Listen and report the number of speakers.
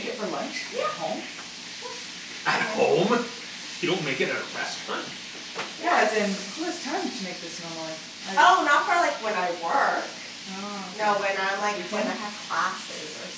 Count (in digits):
3